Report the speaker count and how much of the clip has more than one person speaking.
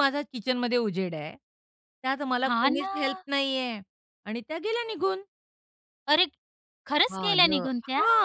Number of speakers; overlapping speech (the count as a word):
two, about 22%